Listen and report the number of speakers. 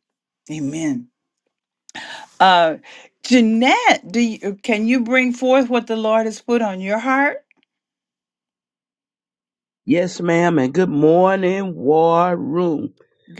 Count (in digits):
2